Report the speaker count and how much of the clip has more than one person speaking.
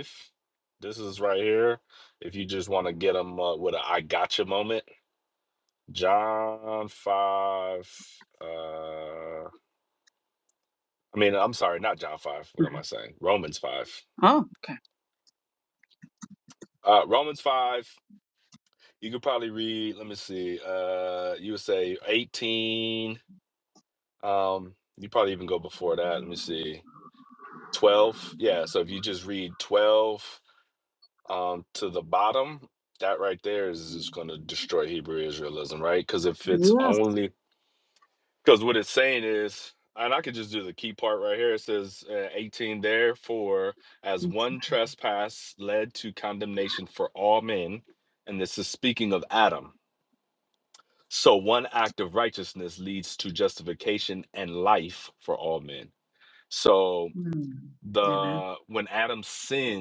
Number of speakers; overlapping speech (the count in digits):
2, about 1%